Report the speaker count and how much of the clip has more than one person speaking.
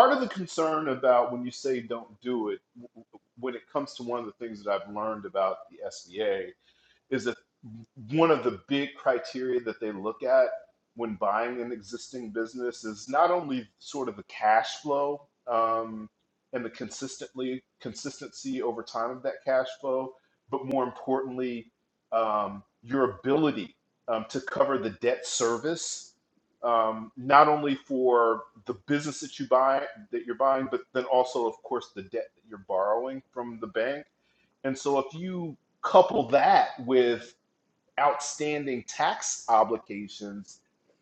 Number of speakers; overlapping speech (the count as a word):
one, no overlap